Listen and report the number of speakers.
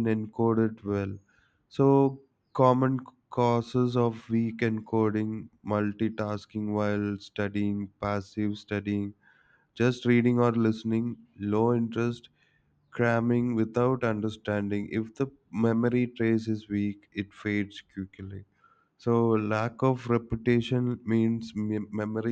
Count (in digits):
1